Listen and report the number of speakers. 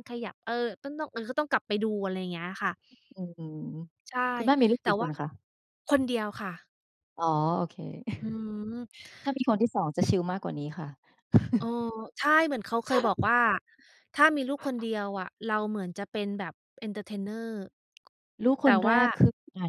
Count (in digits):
2